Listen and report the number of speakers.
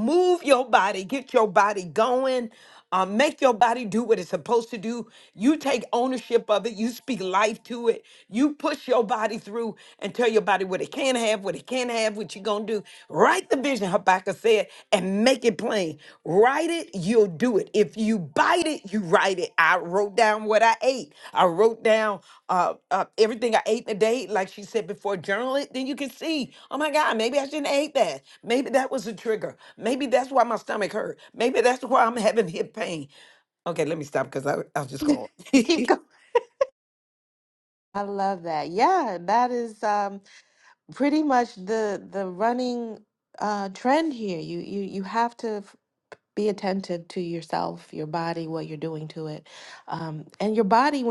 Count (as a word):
two